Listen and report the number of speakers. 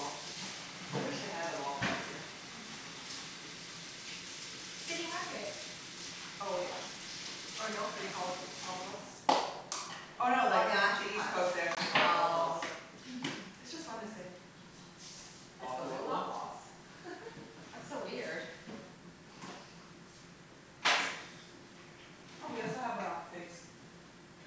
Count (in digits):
2